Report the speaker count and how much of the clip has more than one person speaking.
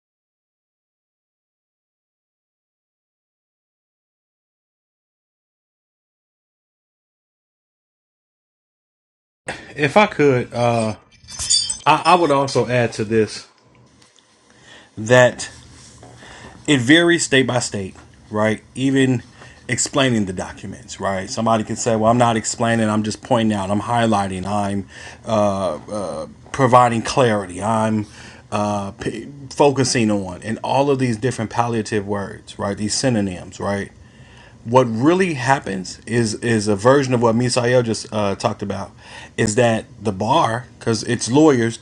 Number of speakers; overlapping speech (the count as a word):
one, no overlap